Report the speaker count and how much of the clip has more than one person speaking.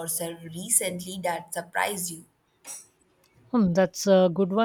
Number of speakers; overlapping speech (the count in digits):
2, no overlap